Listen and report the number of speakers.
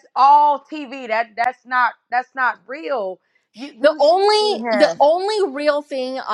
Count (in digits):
2